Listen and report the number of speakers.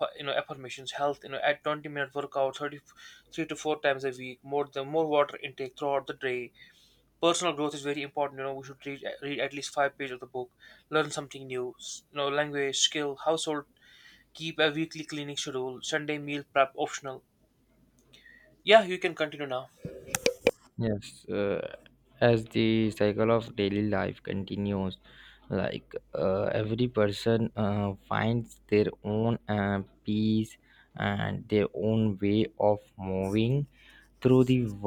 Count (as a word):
two